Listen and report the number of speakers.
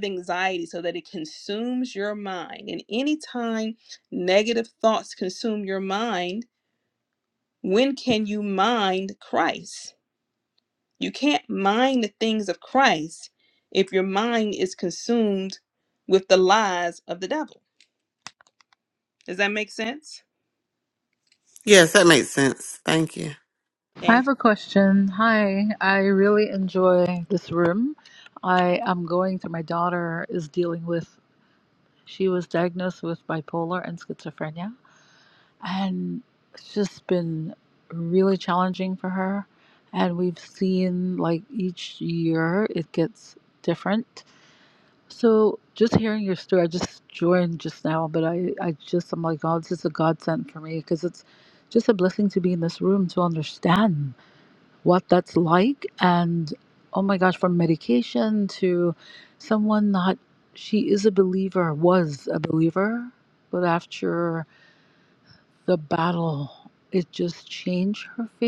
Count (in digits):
3